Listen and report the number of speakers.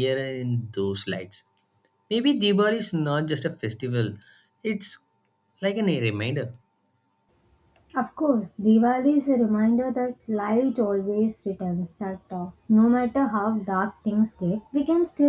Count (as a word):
two